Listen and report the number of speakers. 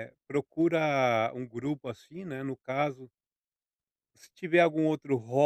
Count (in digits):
1